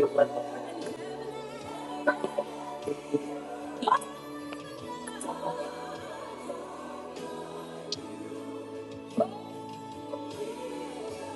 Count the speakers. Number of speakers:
0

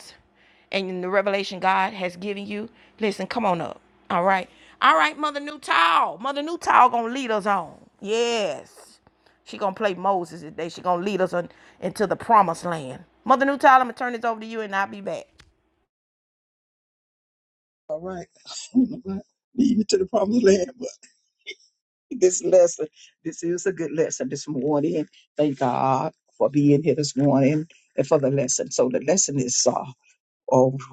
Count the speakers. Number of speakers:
2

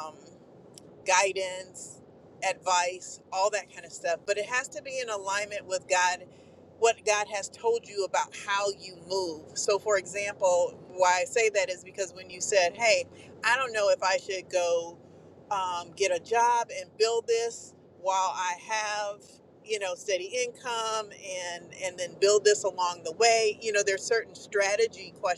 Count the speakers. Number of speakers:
1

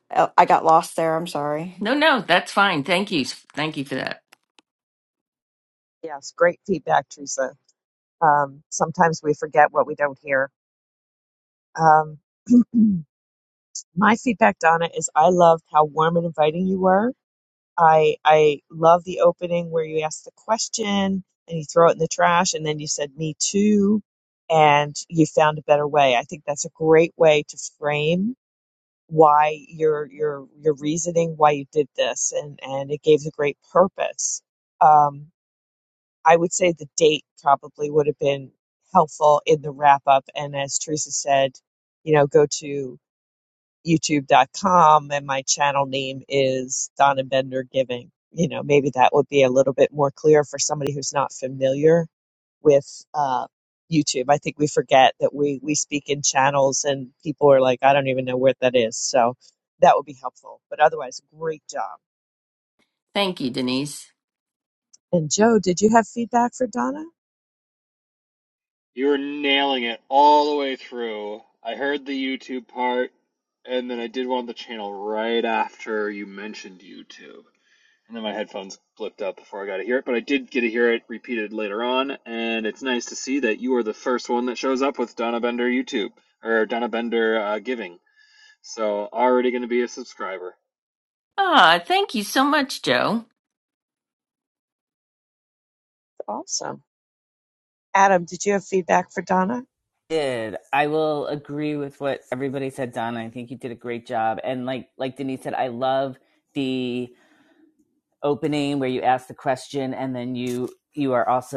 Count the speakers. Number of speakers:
5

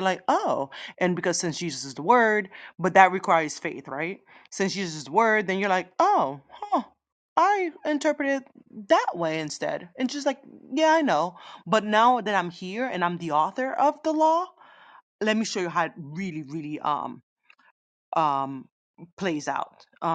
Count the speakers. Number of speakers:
1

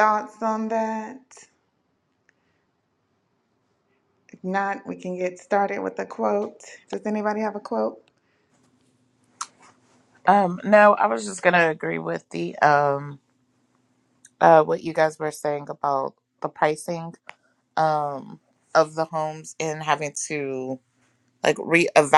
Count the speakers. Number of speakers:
2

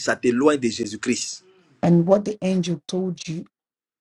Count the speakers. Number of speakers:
2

